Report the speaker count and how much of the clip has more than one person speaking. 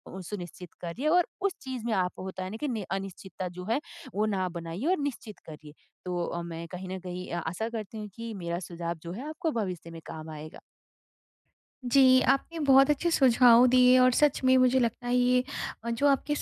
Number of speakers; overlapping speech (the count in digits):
2, no overlap